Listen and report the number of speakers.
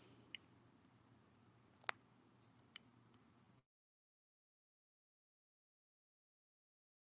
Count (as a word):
zero